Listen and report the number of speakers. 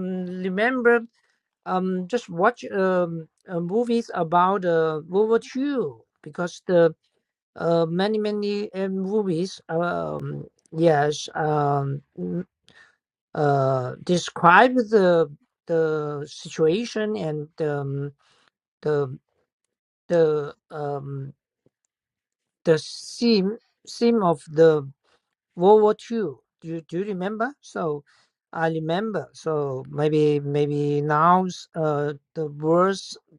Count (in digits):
1